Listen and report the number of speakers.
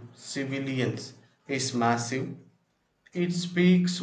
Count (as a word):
one